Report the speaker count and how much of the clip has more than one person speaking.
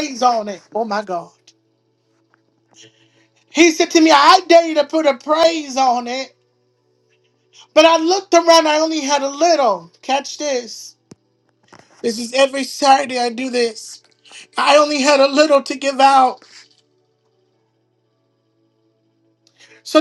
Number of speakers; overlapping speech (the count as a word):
one, no overlap